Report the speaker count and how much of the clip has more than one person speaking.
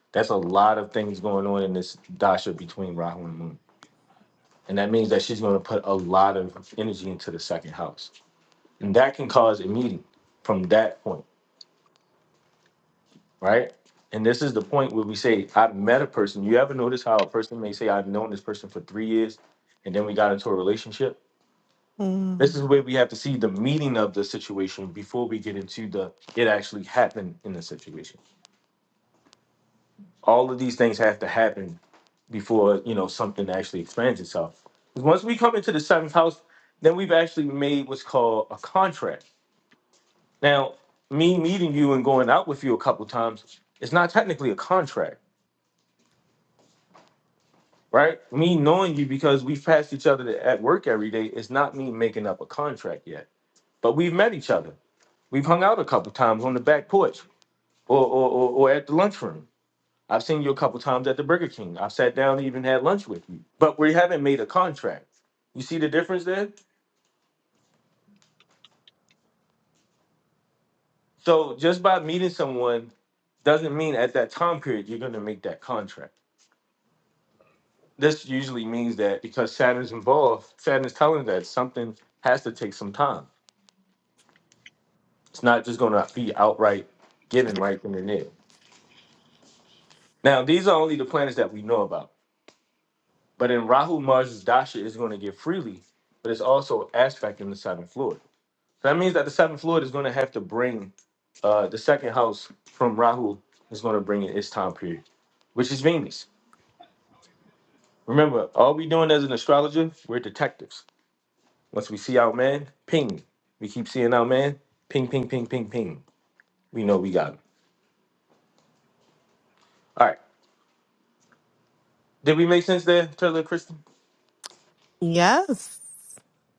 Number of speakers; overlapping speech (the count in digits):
2, under 1%